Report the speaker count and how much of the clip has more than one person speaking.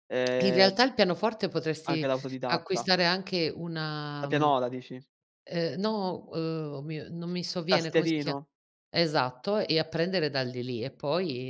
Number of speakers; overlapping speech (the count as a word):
two, about 17%